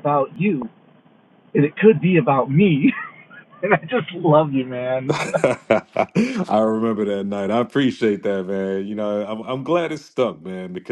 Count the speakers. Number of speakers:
2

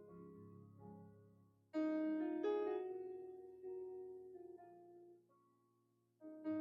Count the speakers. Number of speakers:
0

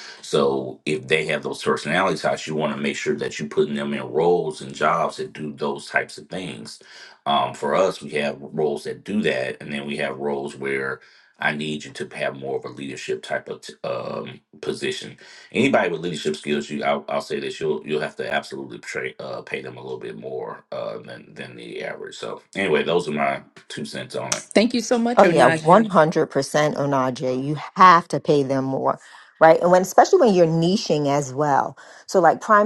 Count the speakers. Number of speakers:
3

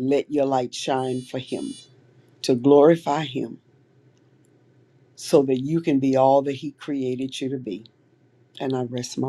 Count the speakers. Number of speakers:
1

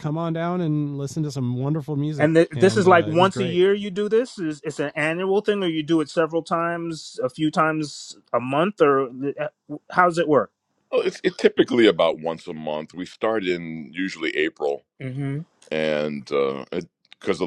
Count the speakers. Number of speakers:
3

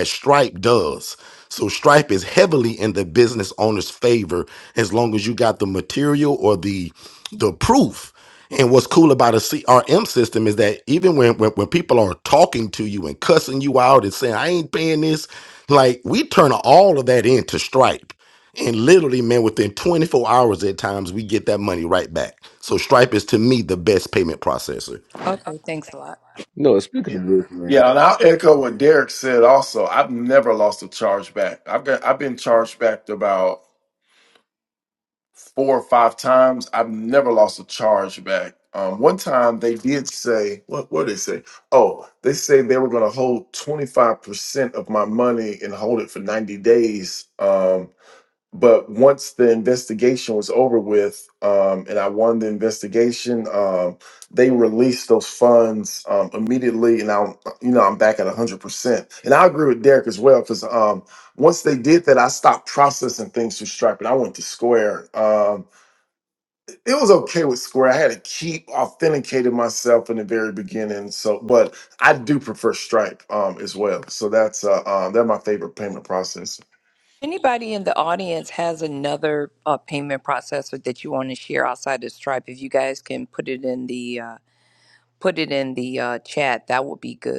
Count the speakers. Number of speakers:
4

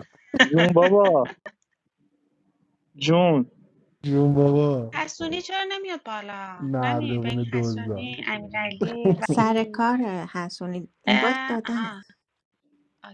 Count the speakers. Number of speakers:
4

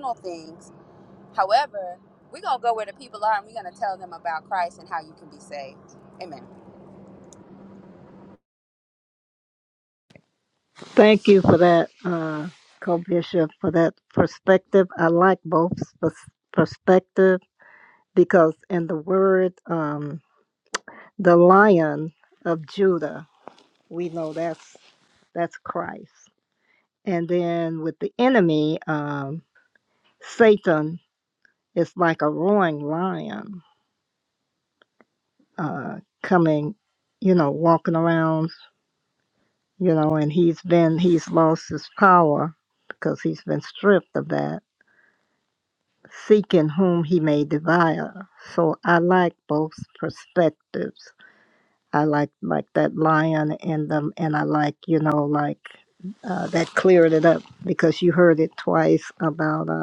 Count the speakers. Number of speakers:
2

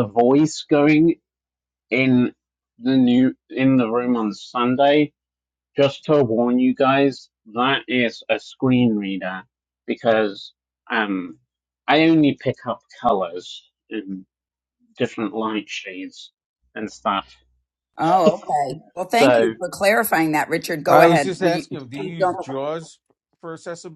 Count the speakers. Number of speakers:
3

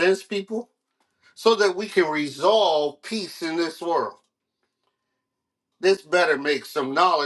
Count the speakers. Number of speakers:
1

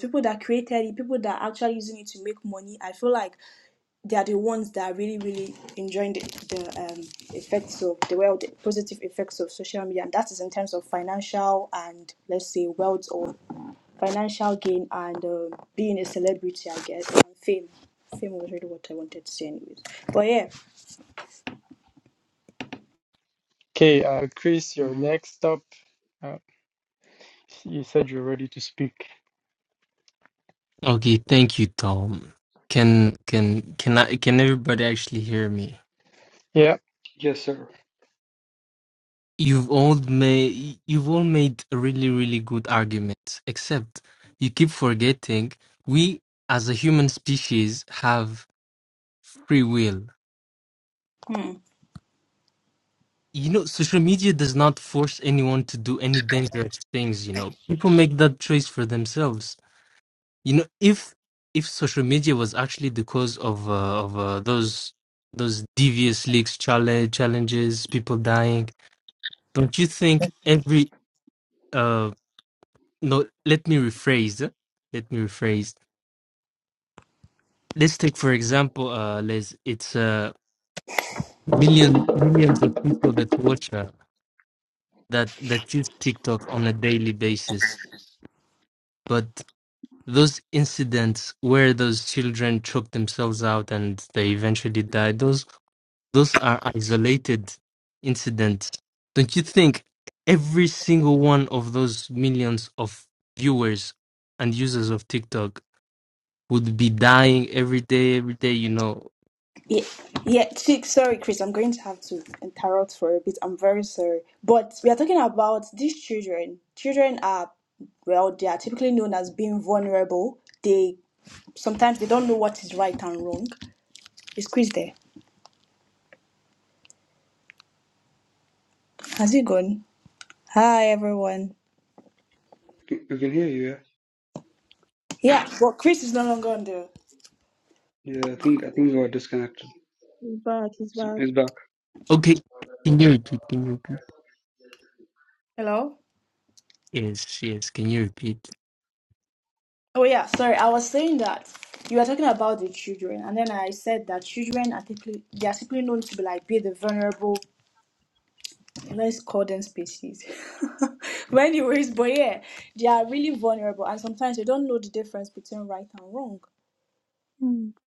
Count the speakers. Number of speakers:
5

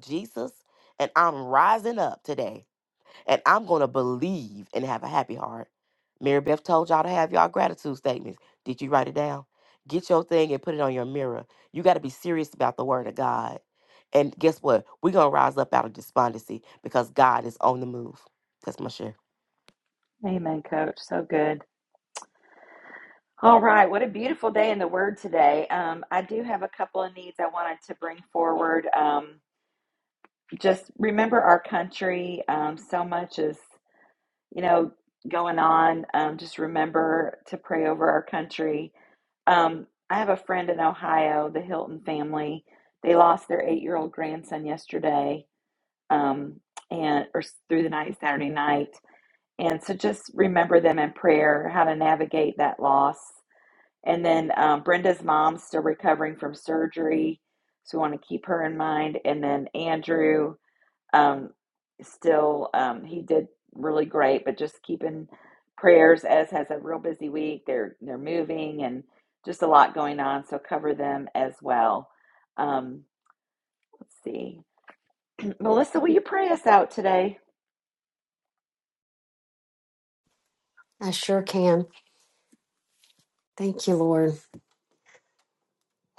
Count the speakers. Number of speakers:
3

